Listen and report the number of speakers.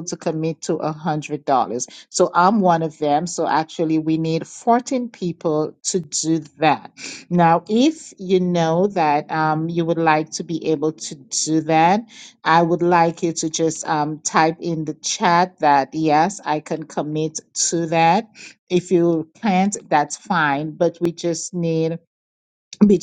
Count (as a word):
one